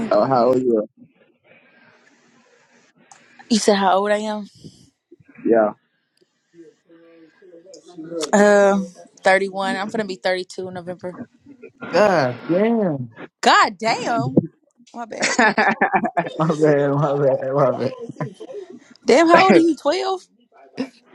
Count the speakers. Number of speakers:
3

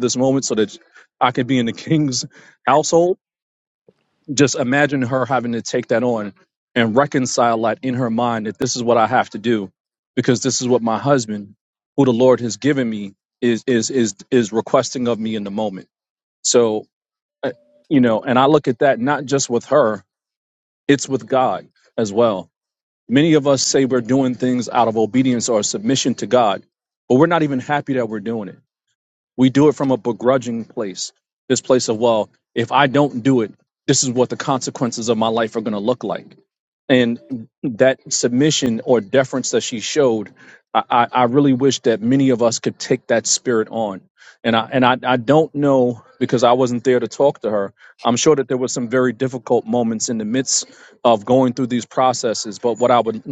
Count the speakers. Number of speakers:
1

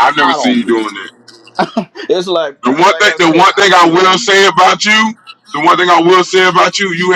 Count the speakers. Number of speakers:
2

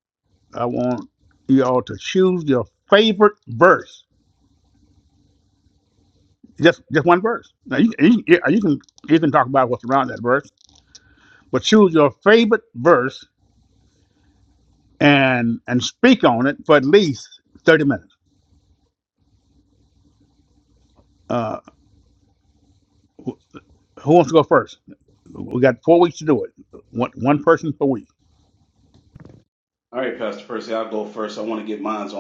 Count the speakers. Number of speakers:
2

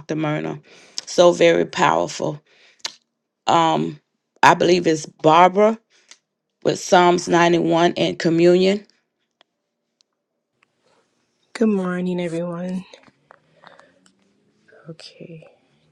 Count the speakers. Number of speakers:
2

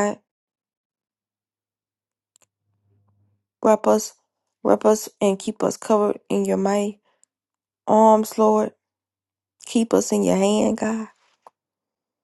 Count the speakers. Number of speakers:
1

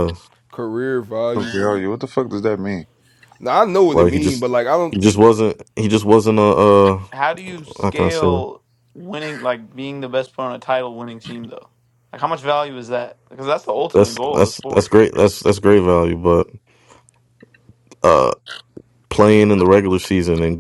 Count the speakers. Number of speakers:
4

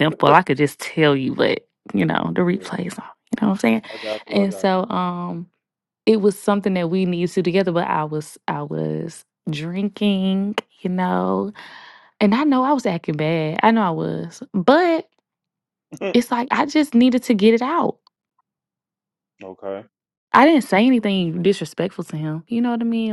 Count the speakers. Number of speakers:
2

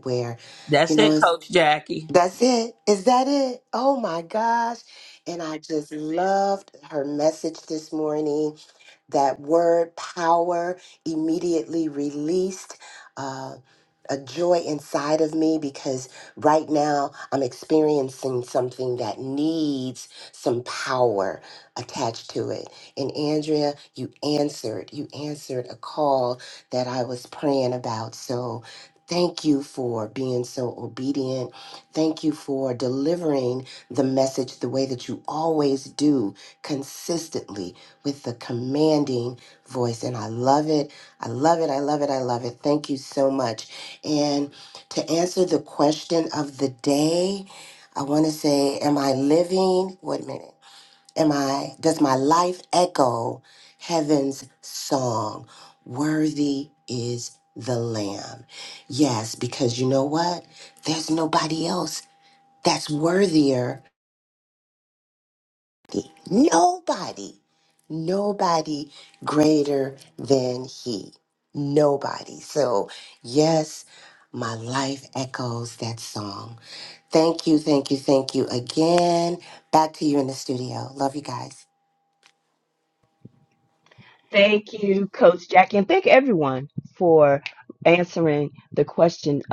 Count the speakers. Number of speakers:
3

